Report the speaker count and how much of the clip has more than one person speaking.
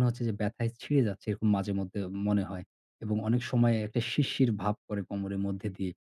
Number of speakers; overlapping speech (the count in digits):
1, no overlap